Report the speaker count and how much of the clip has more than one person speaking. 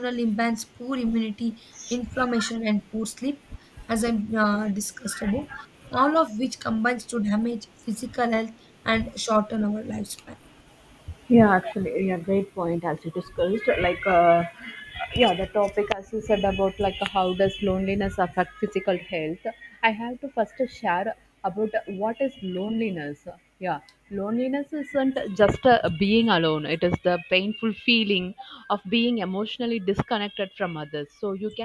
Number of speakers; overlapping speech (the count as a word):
two, no overlap